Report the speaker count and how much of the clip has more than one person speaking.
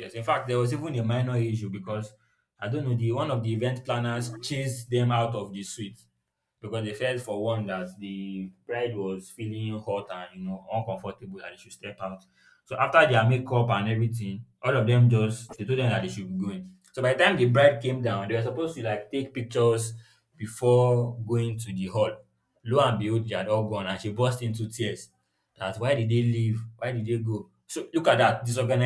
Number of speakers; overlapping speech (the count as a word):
one, no overlap